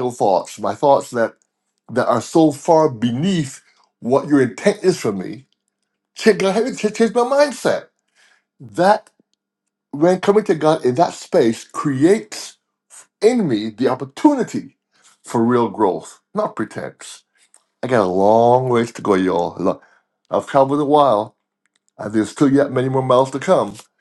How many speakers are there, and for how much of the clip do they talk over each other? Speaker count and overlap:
1, no overlap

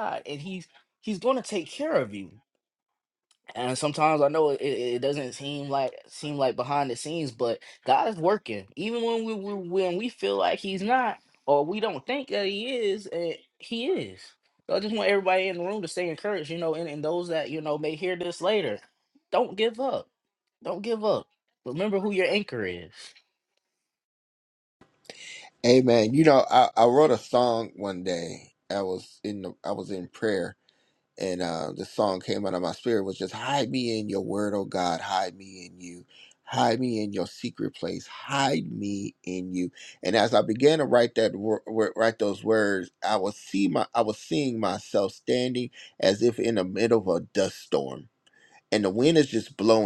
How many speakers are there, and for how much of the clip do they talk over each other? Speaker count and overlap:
2, no overlap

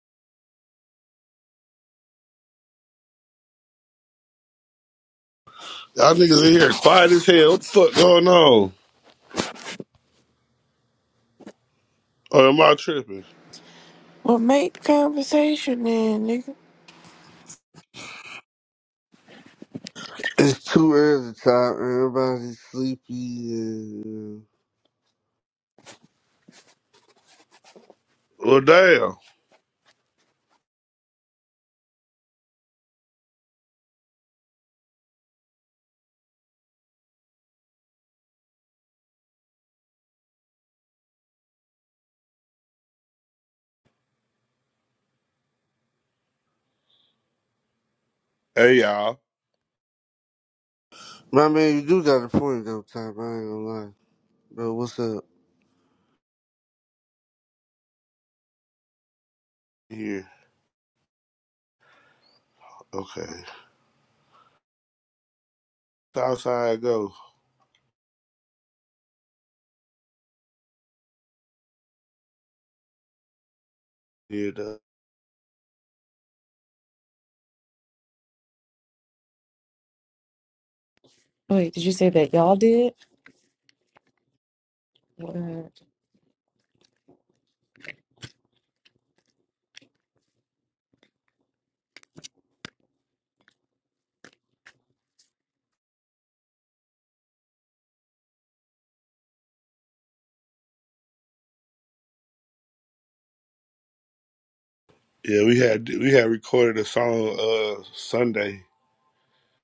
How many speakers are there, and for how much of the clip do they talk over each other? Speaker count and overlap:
4, no overlap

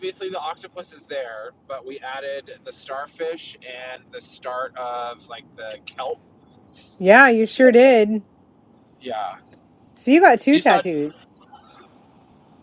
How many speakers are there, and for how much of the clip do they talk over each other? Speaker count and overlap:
2, about 3%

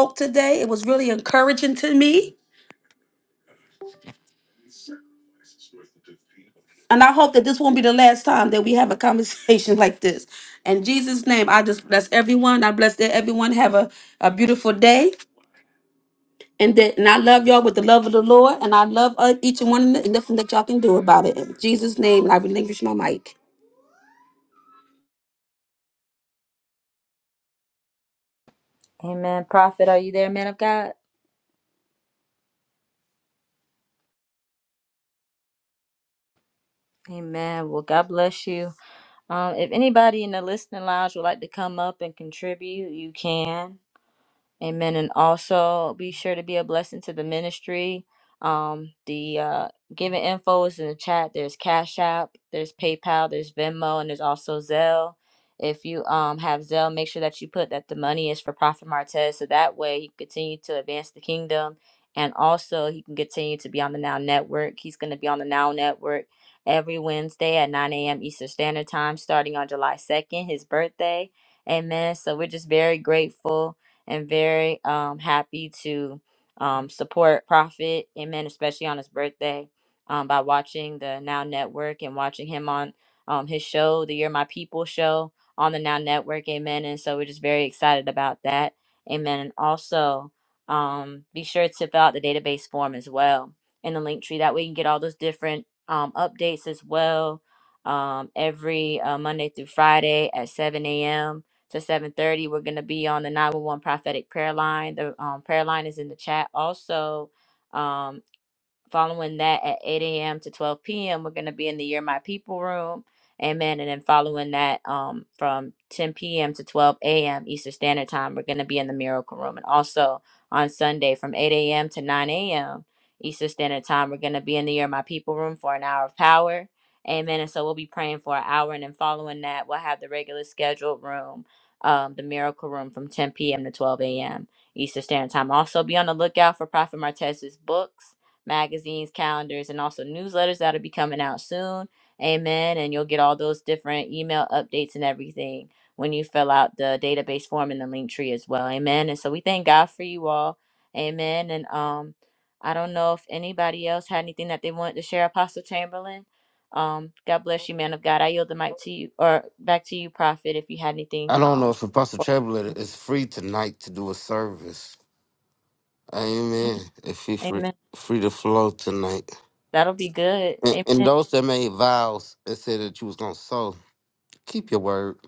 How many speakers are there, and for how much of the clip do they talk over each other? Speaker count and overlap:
3, about 1%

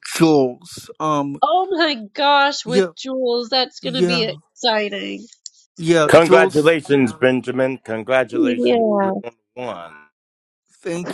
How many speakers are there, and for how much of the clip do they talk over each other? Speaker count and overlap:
3, about 18%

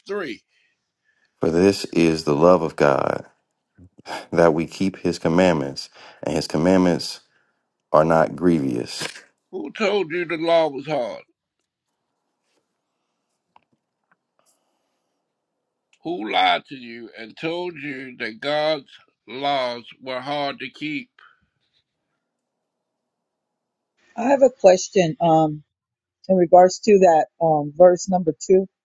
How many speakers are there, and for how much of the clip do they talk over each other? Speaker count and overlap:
3, no overlap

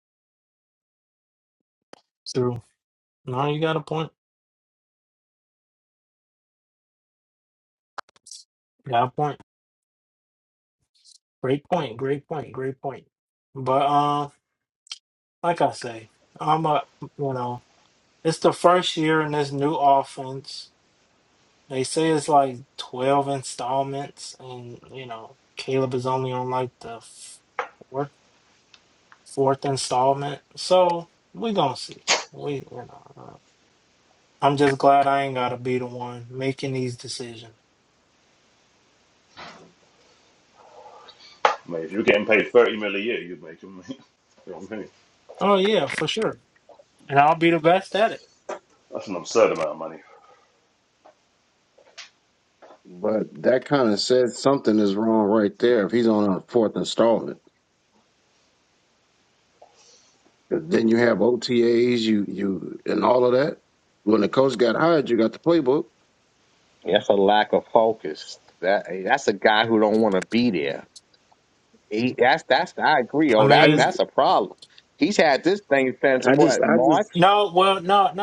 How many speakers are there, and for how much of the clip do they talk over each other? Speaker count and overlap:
4, about 2%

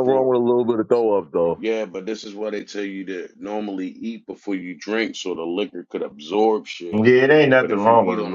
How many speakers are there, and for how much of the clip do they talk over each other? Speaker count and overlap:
3, about 12%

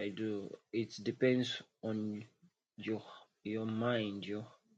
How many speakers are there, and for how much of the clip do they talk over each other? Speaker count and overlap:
1, no overlap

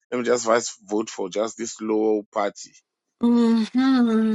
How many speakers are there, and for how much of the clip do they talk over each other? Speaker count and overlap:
2, no overlap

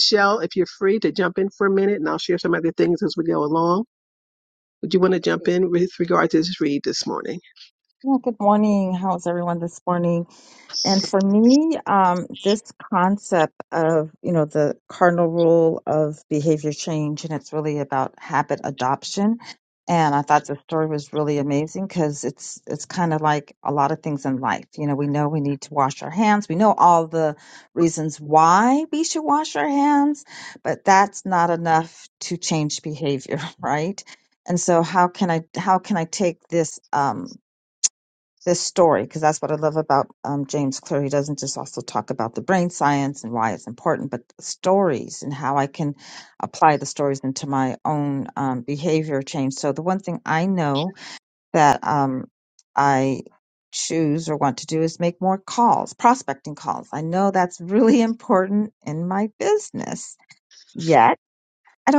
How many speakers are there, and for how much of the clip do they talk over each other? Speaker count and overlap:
2, no overlap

